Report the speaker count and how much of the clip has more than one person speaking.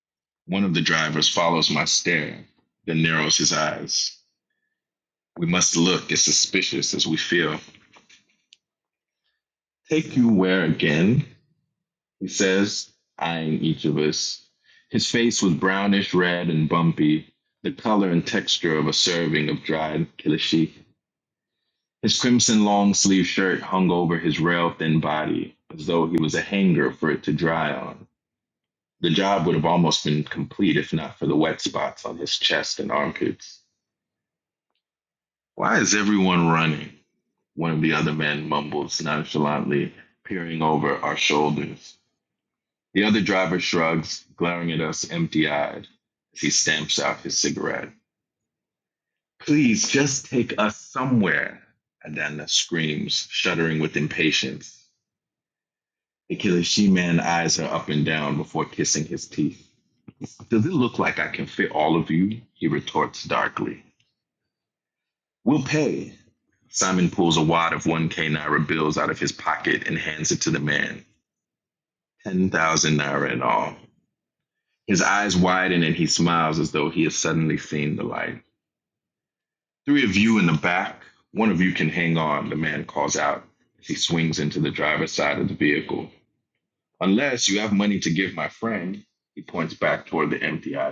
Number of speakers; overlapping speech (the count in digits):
1, no overlap